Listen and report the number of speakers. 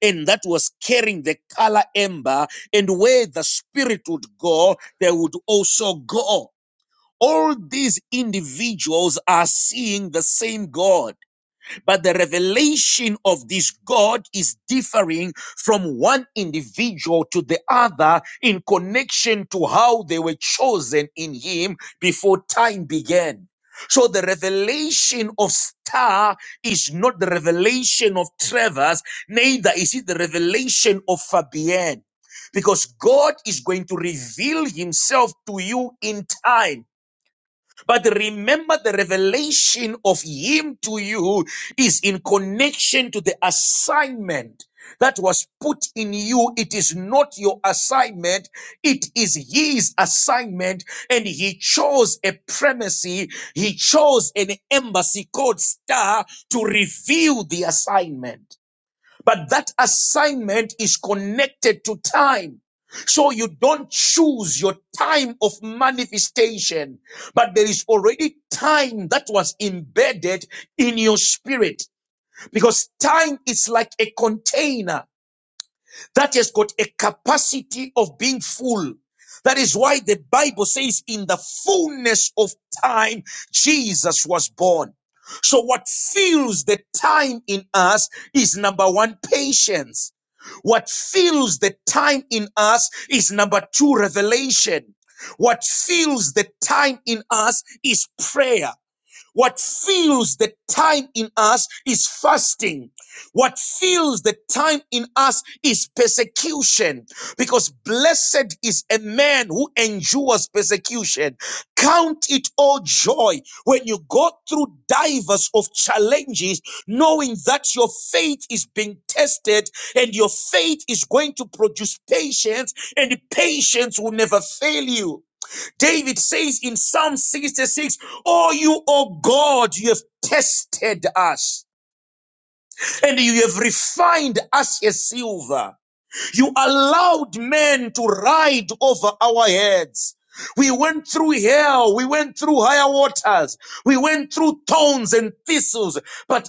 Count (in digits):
1